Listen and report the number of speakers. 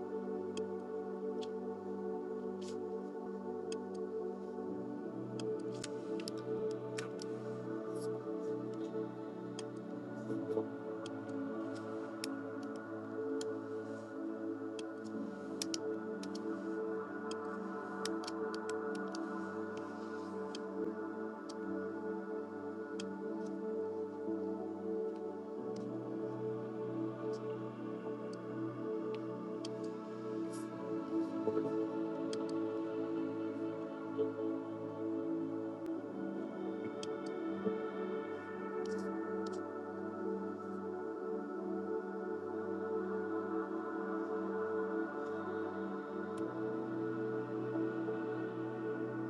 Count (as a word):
zero